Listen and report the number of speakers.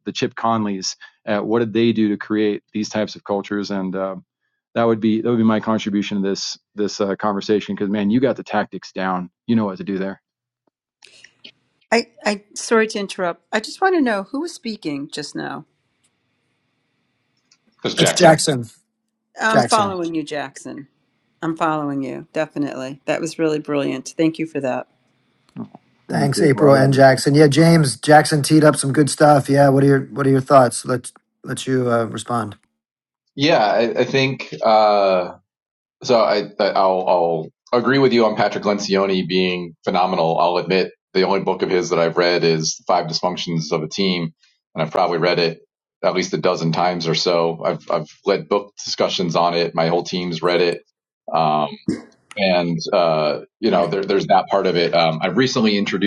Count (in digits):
4